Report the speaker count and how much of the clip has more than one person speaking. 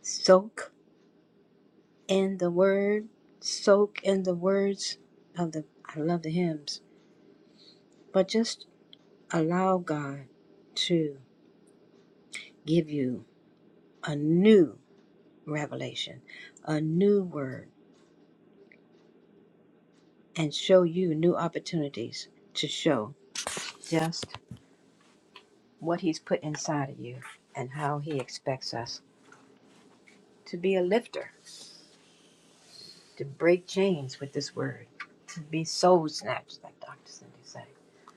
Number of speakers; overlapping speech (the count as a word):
one, no overlap